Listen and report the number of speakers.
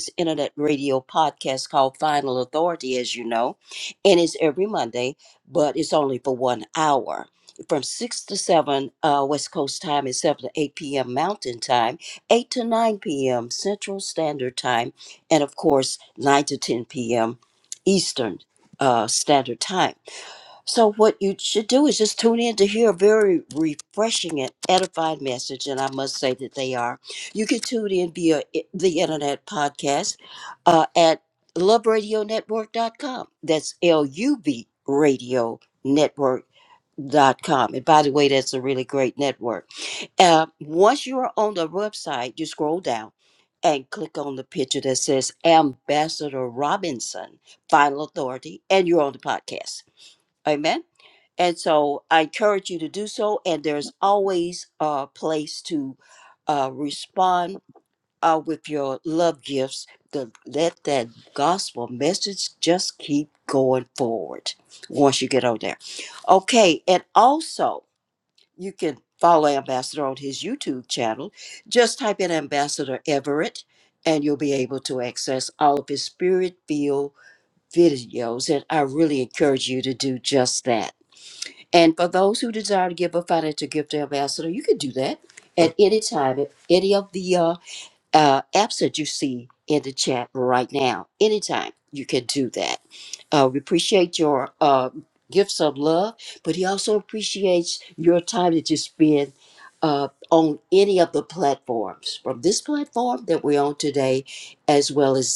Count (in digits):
1